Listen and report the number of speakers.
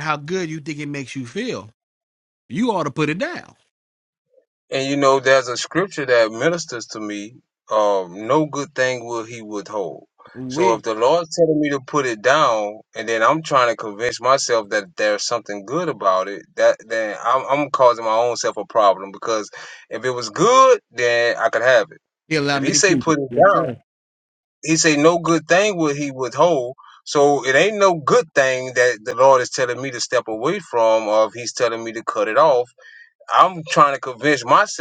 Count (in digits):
2